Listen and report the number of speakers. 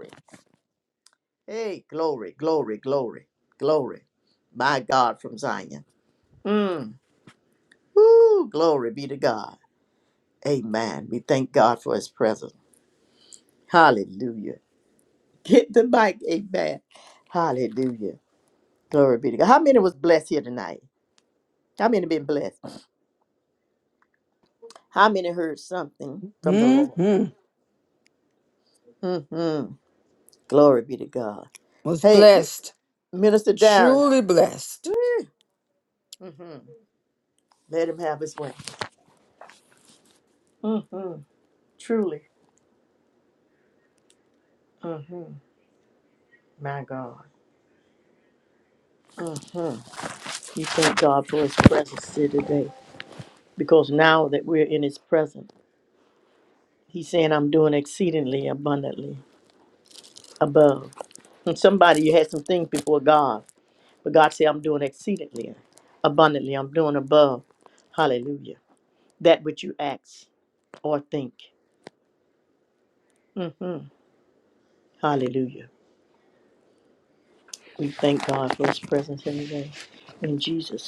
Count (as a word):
two